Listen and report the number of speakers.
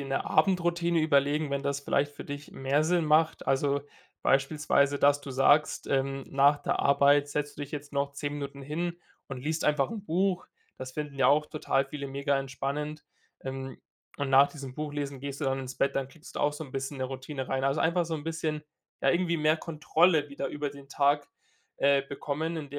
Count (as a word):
one